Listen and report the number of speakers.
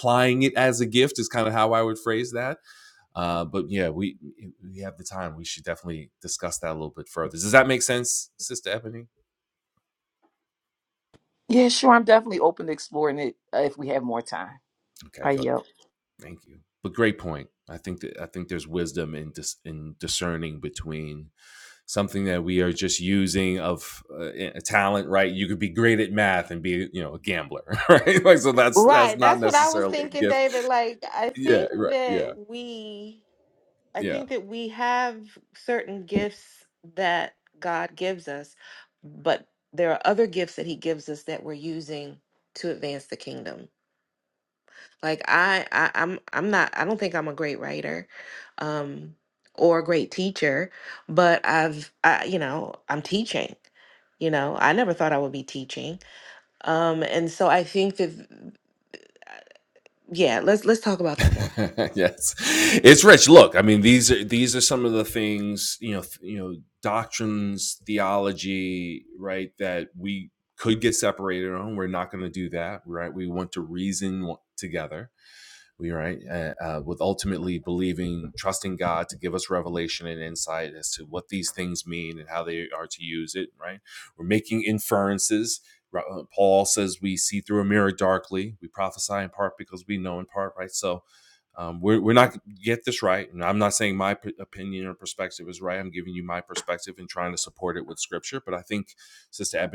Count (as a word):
three